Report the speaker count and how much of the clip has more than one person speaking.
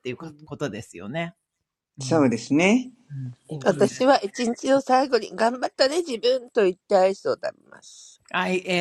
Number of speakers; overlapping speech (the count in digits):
3, about 6%